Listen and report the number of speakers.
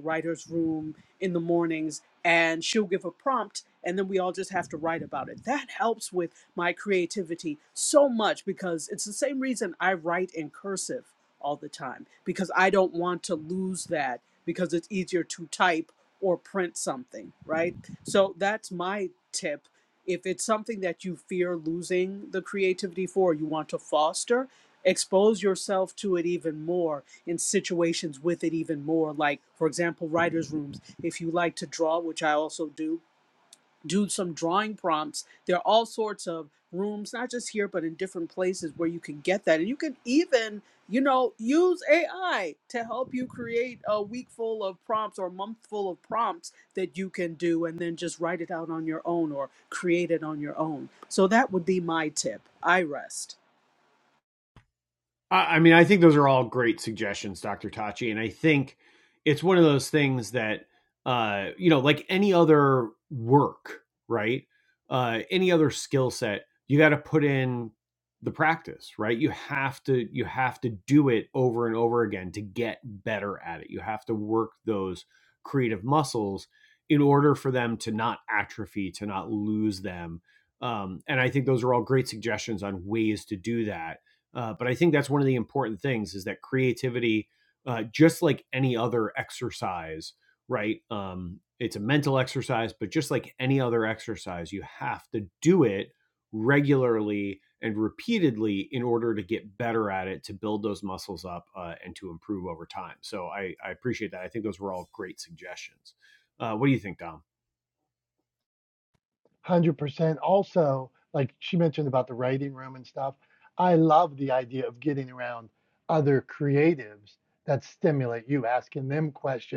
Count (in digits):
3